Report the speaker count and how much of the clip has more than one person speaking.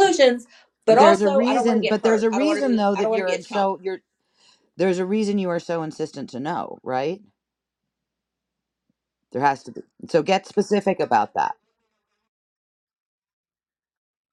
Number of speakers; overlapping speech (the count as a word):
two, about 20%